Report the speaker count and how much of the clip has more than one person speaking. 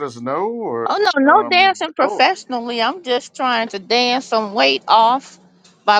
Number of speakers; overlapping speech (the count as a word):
two, about 15%